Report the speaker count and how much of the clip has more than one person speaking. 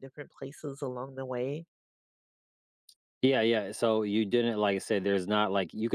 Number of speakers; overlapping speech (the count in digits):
2, no overlap